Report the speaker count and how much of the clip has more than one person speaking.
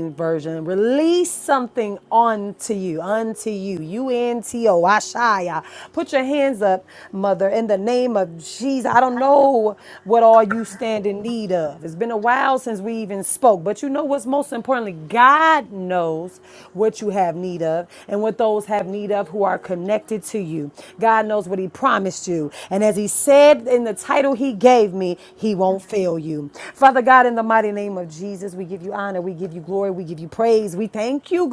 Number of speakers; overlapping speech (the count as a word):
one, no overlap